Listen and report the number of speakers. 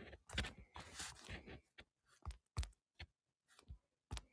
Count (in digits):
0